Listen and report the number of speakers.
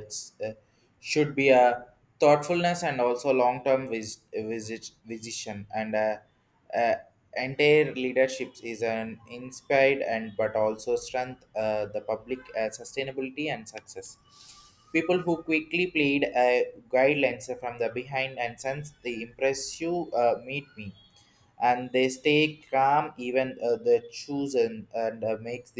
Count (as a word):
one